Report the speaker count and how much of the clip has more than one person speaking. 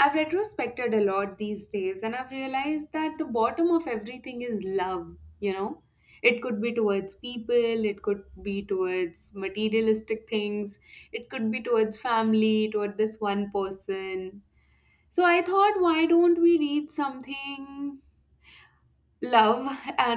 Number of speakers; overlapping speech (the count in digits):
1, no overlap